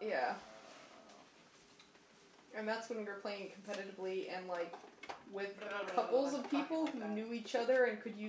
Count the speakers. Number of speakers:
two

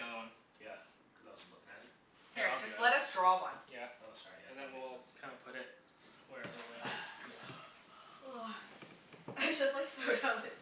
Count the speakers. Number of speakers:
four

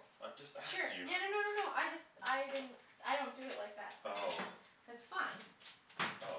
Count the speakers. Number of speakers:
two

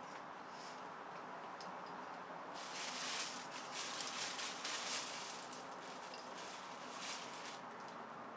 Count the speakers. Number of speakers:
zero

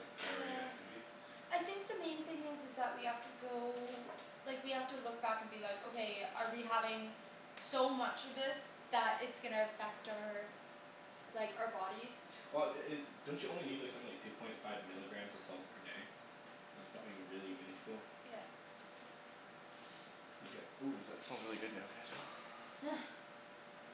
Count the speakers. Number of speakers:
two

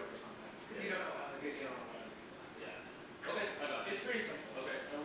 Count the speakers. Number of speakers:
three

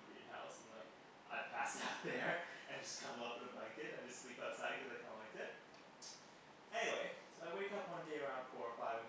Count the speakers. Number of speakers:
one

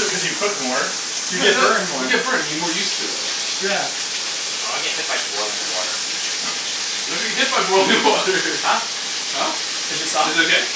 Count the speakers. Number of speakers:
three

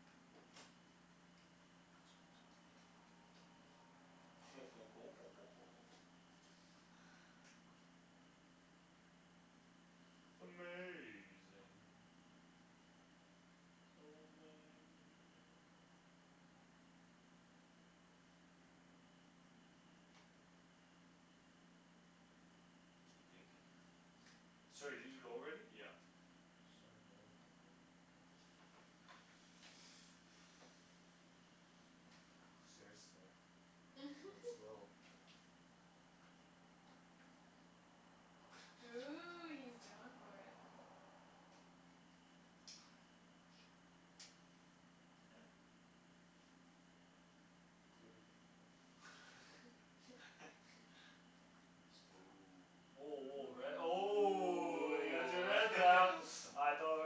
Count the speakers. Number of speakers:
three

